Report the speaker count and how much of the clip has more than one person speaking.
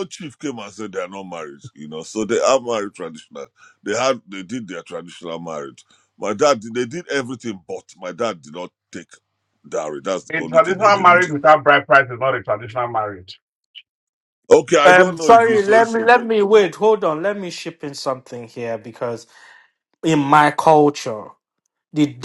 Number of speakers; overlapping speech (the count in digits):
3, about 11%